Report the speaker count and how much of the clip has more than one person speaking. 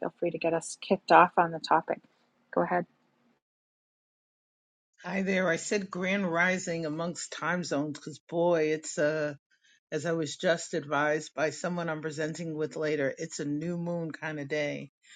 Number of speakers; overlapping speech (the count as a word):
two, no overlap